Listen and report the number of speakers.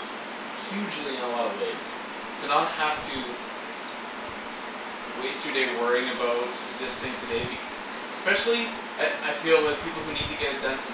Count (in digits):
1